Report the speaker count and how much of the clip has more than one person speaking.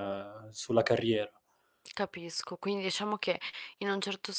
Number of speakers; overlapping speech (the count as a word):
two, no overlap